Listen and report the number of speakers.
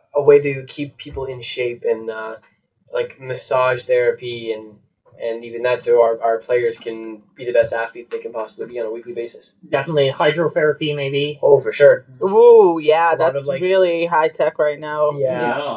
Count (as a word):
three